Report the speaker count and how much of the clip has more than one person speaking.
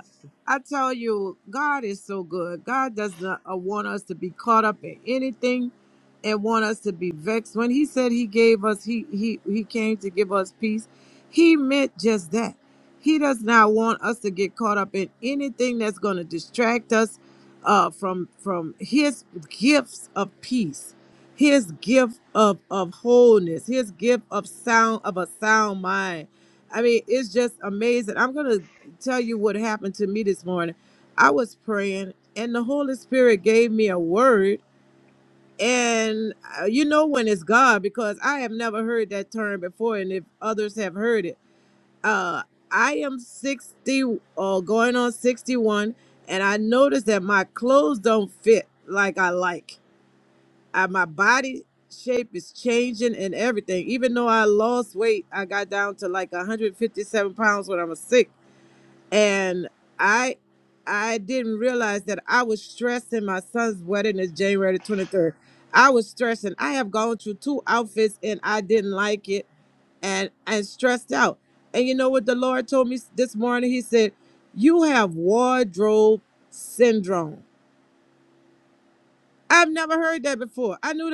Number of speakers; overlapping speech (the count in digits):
1, no overlap